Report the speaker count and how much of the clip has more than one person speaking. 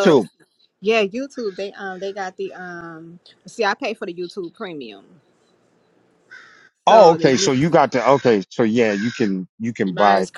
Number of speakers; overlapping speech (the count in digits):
2, about 13%